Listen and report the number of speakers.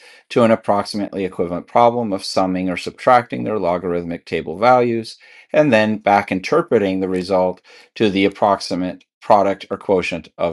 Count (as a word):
one